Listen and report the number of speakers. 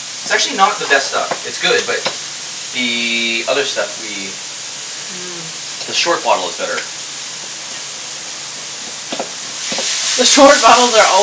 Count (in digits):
2